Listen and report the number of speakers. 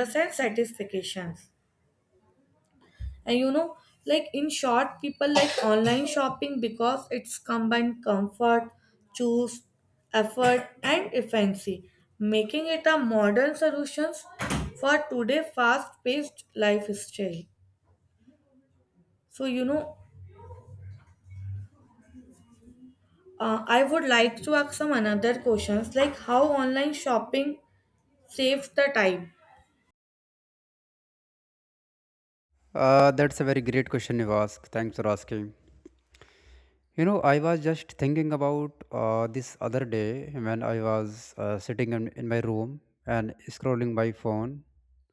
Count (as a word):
two